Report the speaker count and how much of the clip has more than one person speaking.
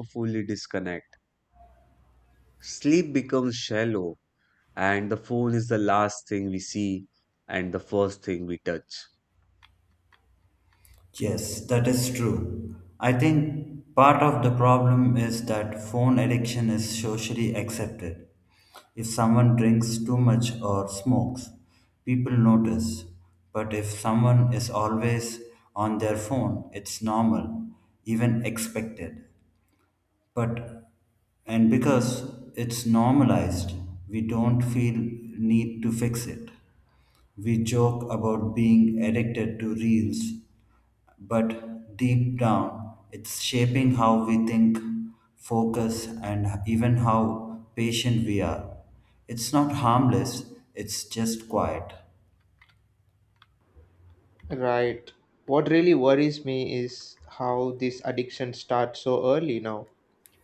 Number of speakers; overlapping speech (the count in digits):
3, no overlap